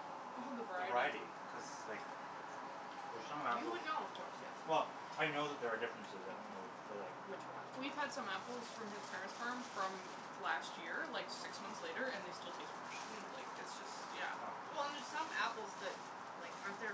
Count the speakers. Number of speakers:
three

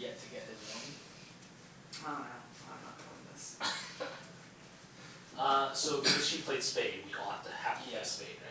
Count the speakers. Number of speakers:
three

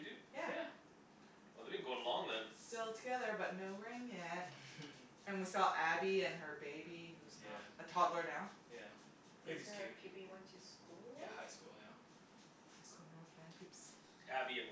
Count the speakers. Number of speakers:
four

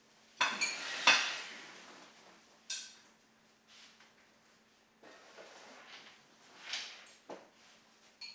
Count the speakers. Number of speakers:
zero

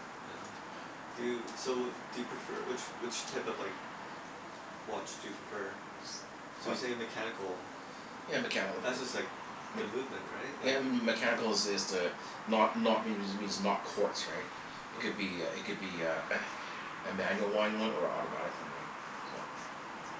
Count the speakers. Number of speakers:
two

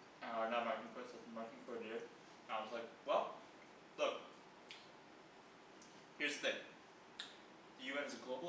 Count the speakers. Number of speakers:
one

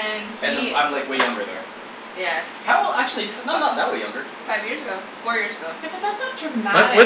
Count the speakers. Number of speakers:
three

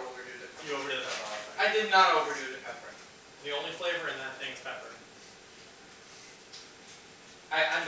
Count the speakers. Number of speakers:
two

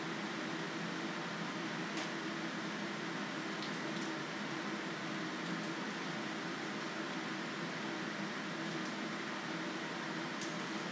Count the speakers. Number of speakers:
zero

